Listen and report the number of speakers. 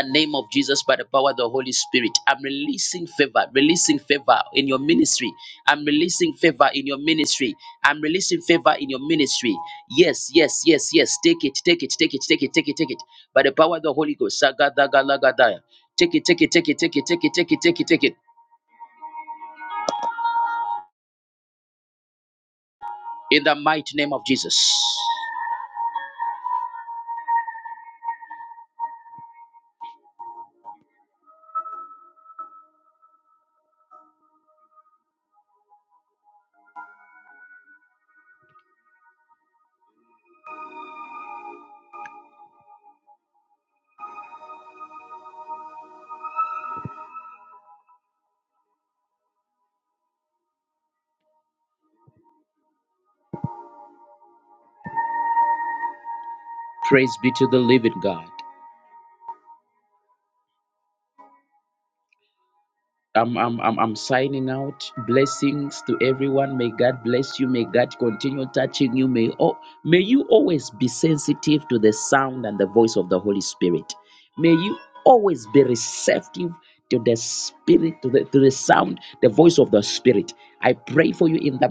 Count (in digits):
1